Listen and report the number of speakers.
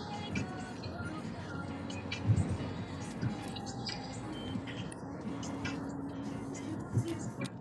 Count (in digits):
0